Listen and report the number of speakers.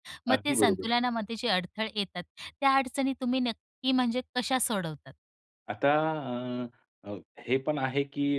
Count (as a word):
two